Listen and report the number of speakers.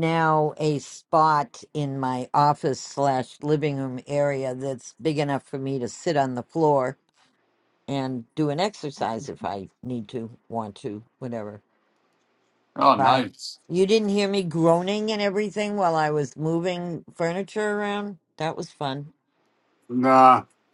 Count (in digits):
2